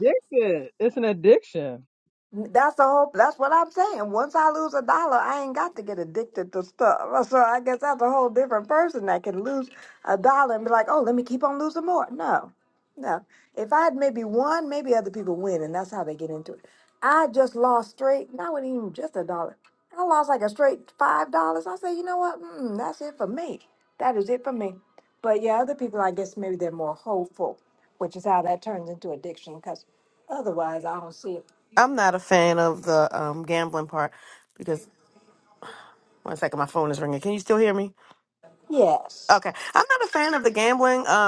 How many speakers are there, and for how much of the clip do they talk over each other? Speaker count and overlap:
3, under 1%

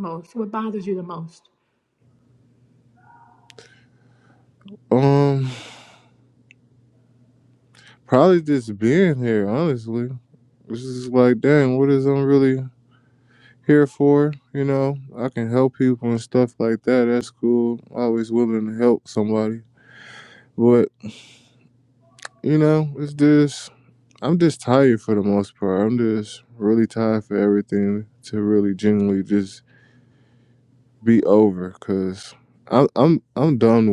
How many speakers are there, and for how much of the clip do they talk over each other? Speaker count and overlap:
2, no overlap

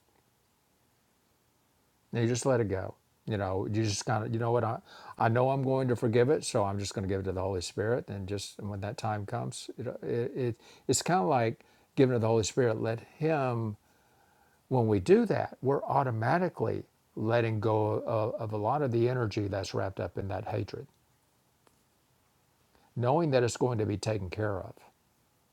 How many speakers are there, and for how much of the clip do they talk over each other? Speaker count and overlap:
1, no overlap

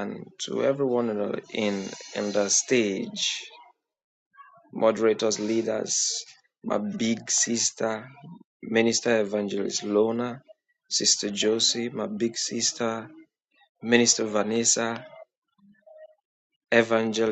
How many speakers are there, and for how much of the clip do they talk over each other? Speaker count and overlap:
1, no overlap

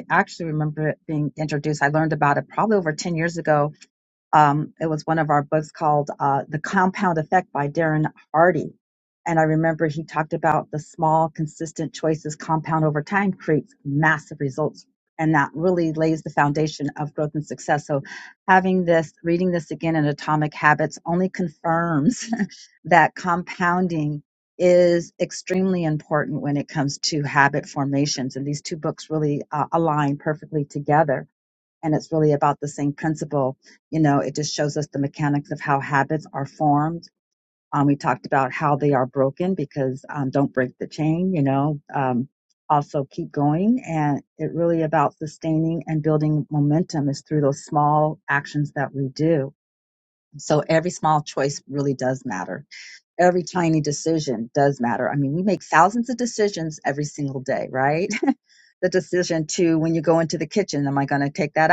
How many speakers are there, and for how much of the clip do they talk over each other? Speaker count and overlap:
1, no overlap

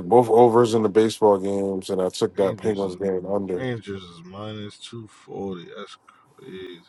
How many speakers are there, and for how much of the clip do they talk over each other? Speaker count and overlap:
2, about 8%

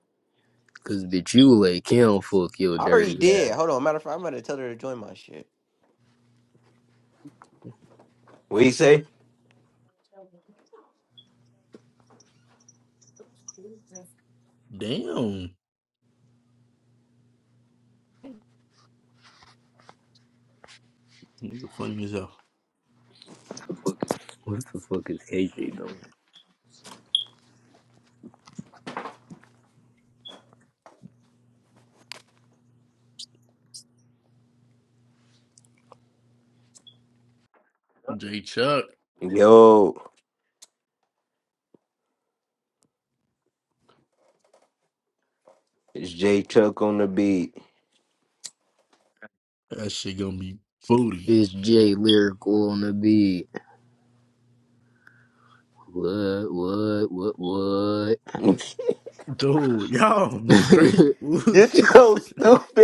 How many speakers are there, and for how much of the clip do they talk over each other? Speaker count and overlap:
4, about 3%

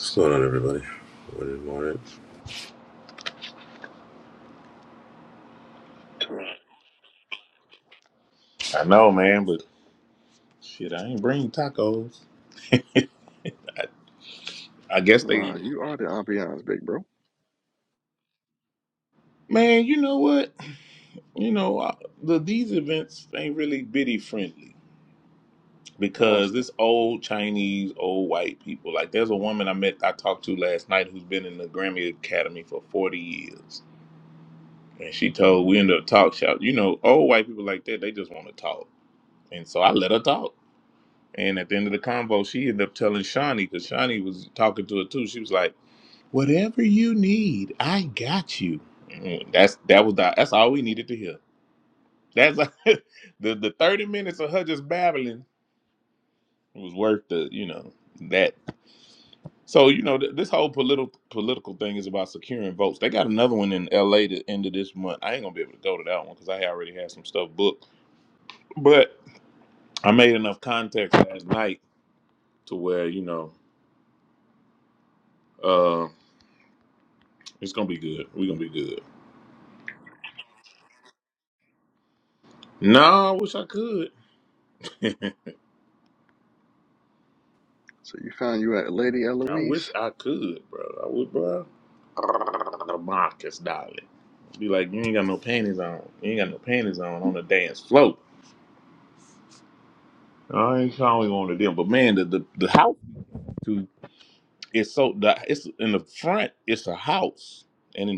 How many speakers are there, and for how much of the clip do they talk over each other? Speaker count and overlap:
3, about 1%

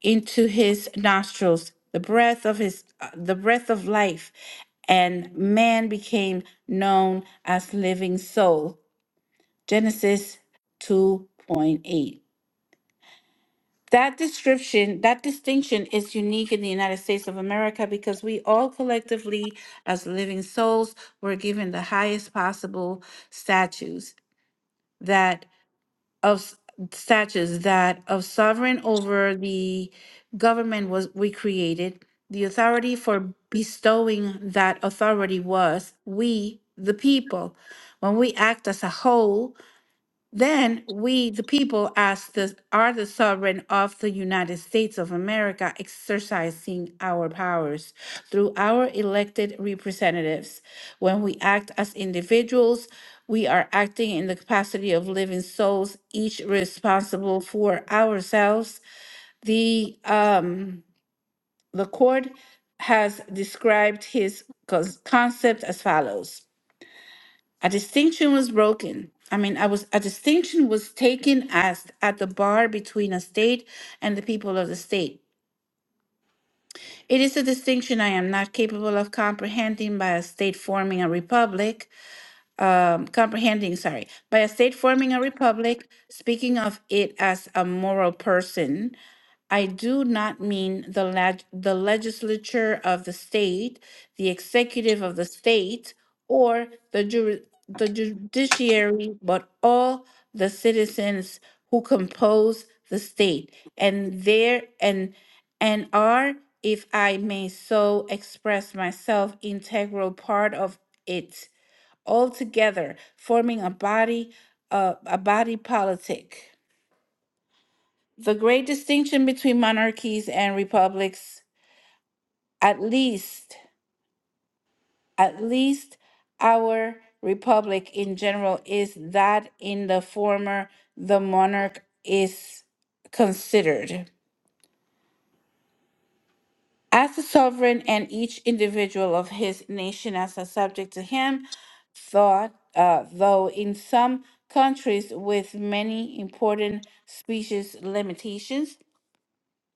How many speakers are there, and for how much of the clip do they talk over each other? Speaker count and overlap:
1, no overlap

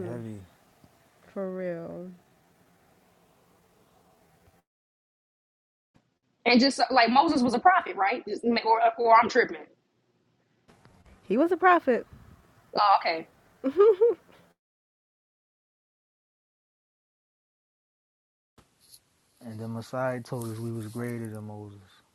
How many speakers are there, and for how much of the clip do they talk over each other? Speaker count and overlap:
3, no overlap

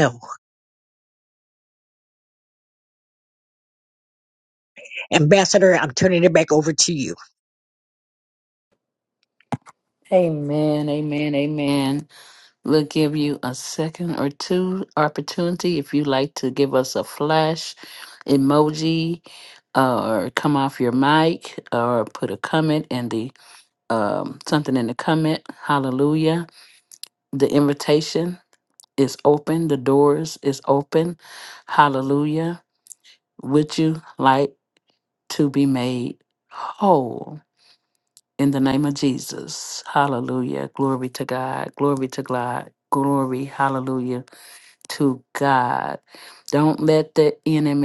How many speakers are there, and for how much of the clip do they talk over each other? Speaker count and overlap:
2, no overlap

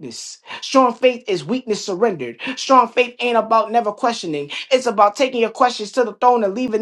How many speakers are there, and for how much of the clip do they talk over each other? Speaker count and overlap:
1, no overlap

